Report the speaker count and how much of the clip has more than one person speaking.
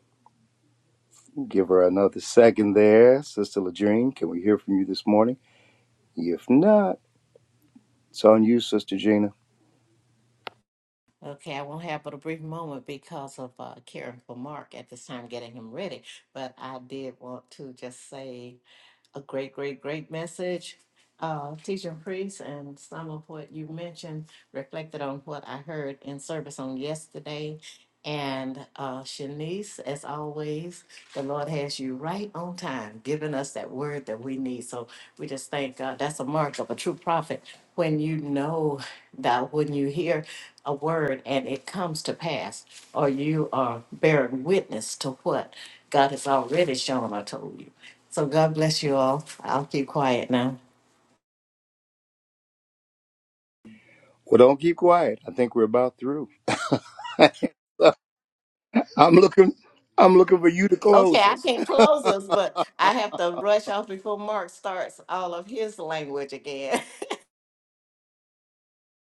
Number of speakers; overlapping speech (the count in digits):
2, about 1%